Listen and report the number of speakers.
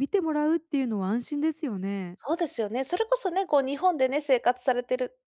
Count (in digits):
2